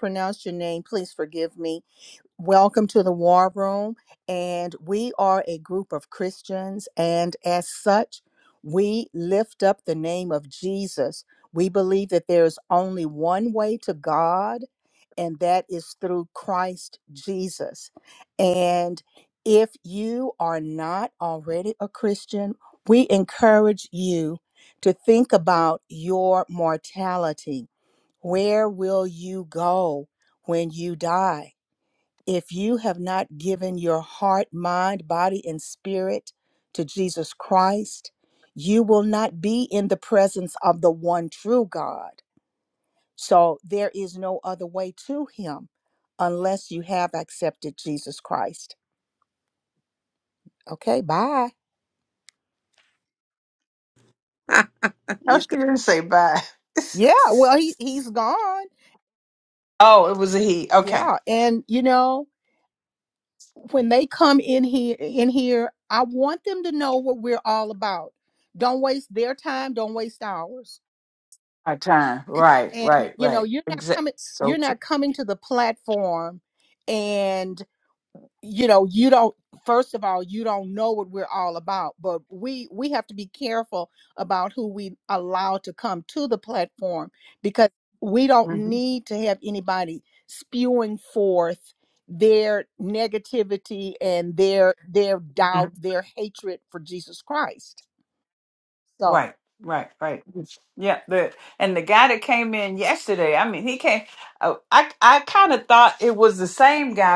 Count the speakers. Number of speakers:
2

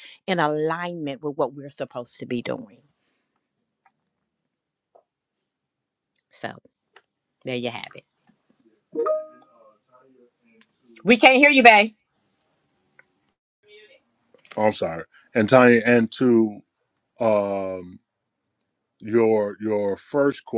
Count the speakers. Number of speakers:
2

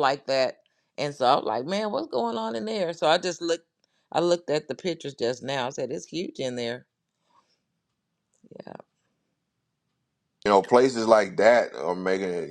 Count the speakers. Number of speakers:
2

